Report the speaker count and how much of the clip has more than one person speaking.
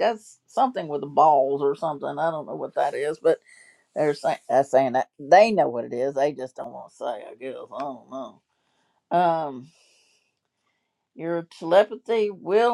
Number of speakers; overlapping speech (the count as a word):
one, no overlap